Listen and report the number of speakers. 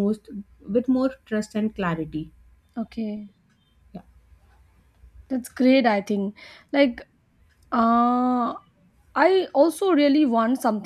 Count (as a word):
two